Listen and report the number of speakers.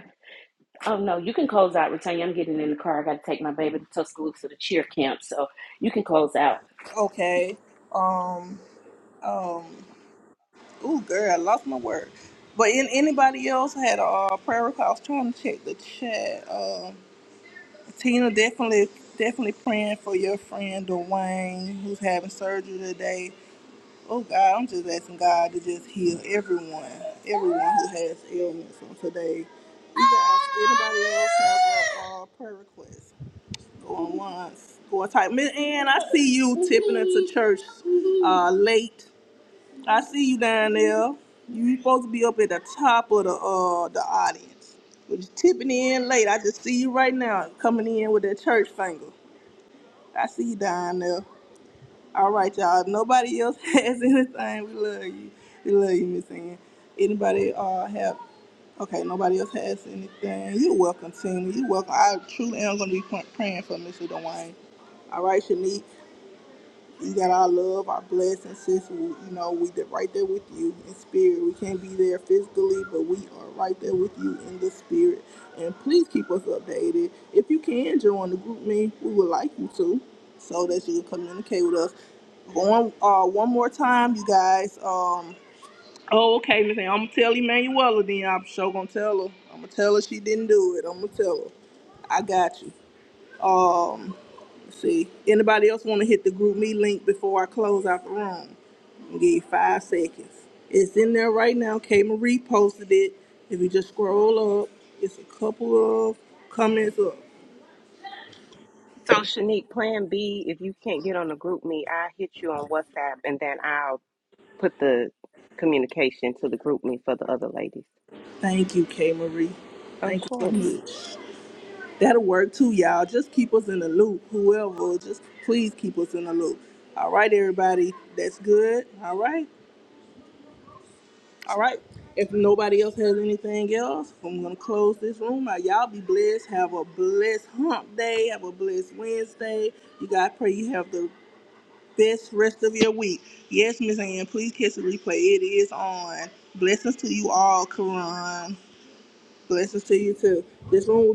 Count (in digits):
3